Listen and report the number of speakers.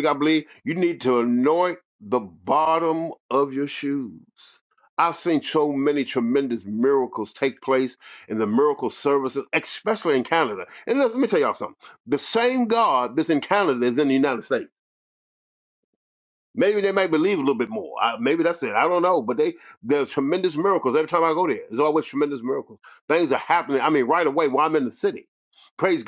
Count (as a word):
one